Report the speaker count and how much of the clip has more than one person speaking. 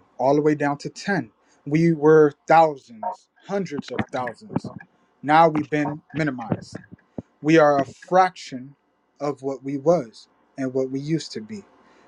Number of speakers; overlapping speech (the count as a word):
one, no overlap